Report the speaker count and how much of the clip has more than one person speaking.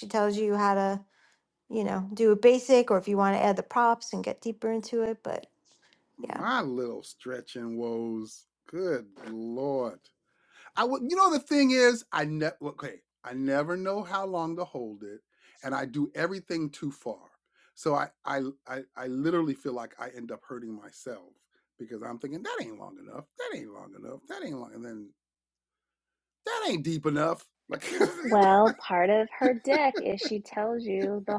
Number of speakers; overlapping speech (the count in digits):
3, about 1%